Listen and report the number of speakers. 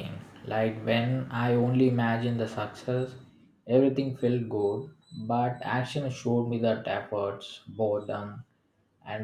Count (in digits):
1